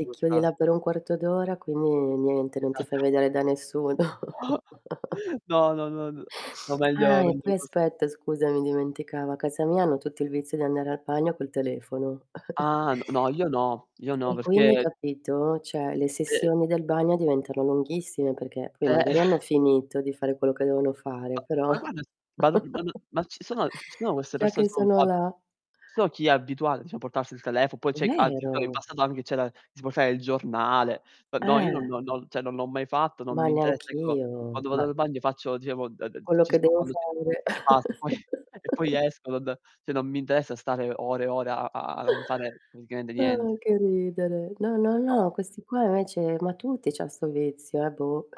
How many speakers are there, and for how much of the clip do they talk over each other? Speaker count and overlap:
2, about 13%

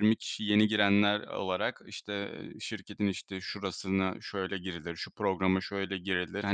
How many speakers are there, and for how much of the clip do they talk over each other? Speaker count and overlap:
1, no overlap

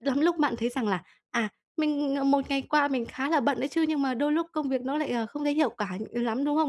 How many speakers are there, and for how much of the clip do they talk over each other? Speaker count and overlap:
1, no overlap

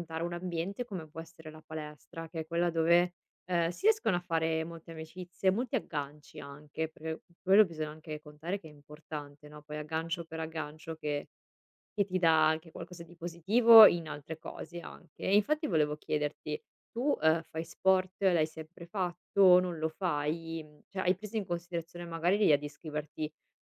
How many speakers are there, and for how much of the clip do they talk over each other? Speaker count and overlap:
1, no overlap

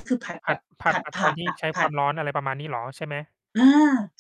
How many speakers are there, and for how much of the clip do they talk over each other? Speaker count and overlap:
2, about 35%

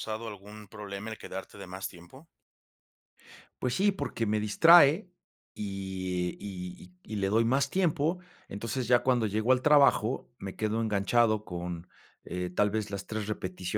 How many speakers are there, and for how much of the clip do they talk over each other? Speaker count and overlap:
2, no overlap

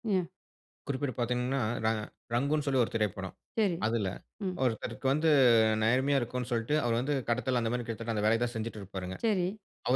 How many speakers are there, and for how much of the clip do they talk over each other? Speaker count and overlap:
2, no overlap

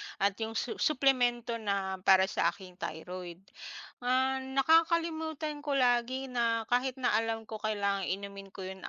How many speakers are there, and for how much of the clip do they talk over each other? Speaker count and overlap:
1, no overlap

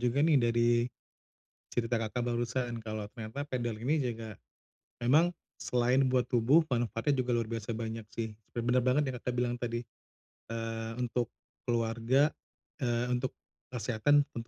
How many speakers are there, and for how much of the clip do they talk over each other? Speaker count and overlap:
1, no overlap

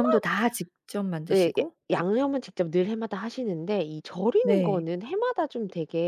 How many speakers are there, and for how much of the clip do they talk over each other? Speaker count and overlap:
2, about 17%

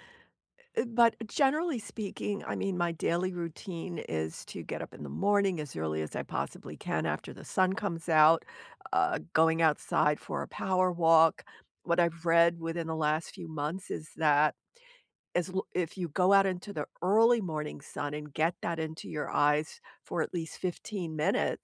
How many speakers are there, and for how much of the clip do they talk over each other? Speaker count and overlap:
1, no overlap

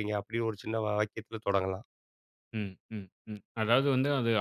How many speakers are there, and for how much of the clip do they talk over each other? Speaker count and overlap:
2, no overlap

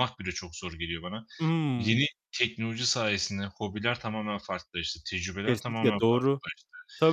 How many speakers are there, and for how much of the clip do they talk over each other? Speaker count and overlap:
2, about 15%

